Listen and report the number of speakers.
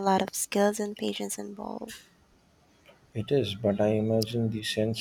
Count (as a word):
two